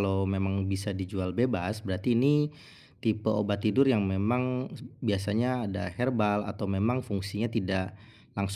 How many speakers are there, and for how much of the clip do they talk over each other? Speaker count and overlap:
one, no overlap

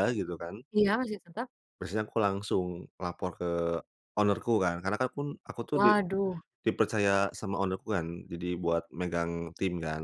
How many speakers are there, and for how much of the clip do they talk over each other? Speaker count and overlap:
two, about 2%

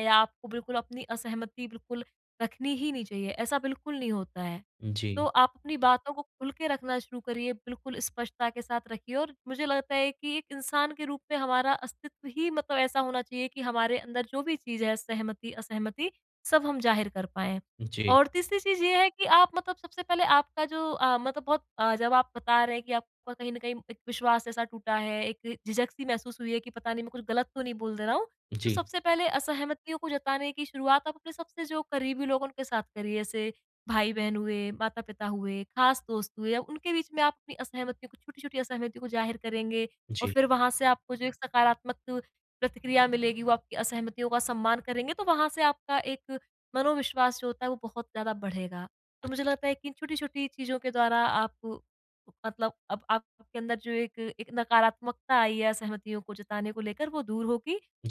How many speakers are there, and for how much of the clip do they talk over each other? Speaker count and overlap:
two, about 1%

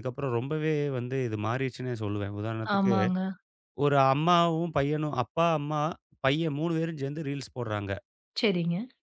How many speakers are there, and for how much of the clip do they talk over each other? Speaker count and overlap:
two, about 3%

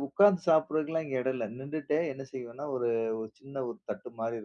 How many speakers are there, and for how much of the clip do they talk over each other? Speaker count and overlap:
one, no overlap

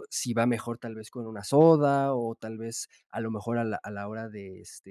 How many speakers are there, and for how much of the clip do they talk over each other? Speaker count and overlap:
one, no overlap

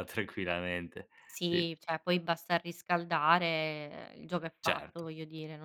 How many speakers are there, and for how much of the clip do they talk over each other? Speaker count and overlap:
two, about 6%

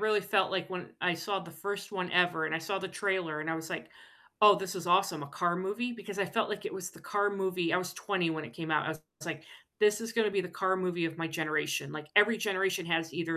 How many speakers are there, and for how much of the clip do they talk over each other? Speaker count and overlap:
one, no overlap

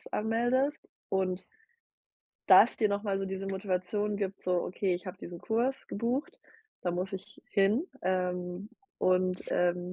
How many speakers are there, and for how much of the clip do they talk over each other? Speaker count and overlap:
one, no overlap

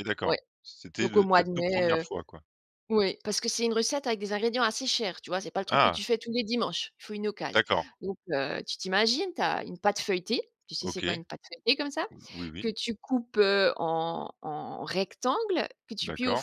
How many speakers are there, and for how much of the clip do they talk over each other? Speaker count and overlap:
two, about 14%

